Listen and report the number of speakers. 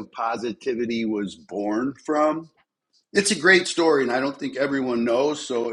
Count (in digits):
1